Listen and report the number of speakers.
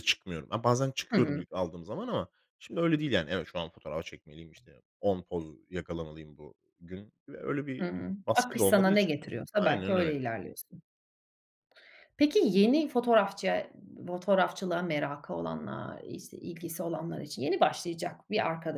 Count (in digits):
2